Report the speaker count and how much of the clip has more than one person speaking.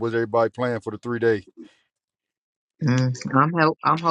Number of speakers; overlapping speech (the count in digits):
2, no overlap